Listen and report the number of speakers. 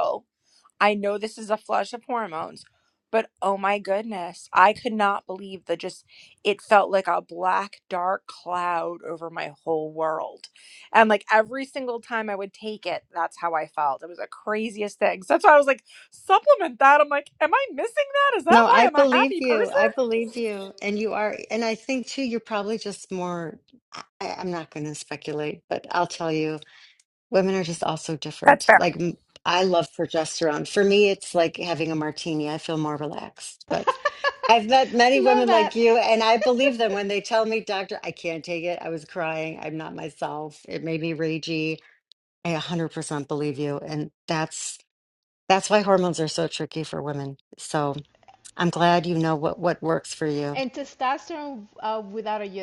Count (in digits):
3